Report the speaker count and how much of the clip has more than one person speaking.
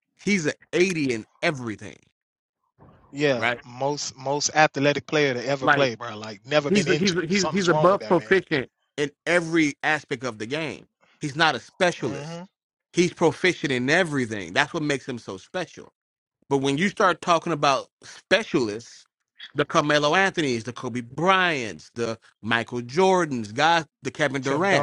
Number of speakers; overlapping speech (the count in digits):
2, about 11%